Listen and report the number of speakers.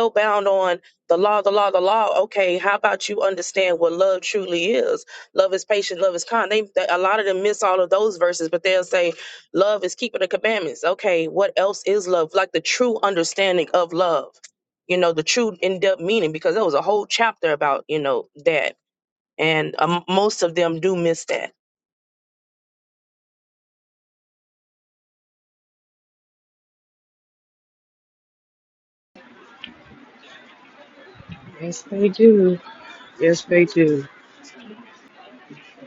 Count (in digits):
2